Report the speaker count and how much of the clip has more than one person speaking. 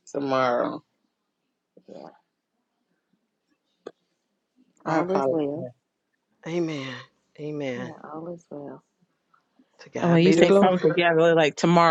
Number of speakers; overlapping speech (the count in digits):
4, about 13%